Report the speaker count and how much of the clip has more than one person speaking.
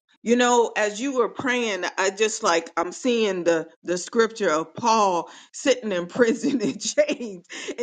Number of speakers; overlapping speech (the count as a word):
one, no overlap